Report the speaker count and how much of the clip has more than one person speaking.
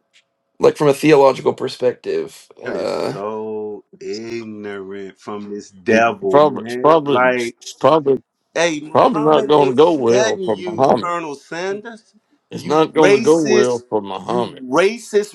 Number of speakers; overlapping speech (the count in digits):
3, about 38%